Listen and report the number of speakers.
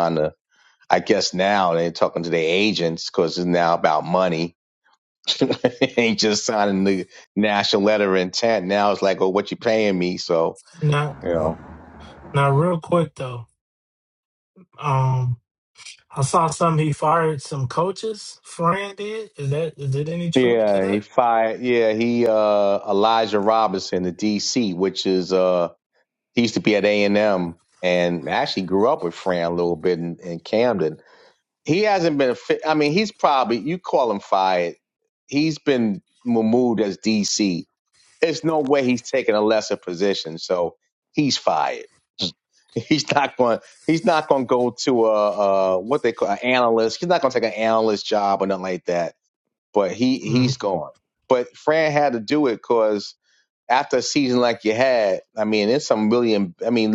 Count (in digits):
2